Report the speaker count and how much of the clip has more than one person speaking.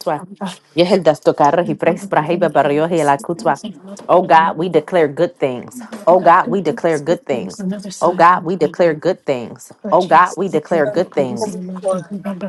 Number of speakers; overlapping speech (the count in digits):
2, about 55%